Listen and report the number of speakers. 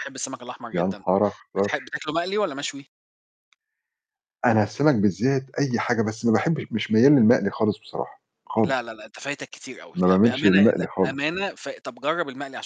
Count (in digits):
2